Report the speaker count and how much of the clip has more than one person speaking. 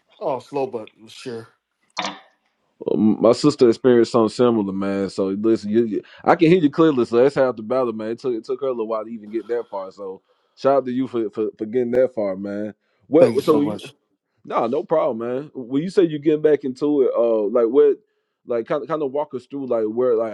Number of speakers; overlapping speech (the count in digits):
2, about 3%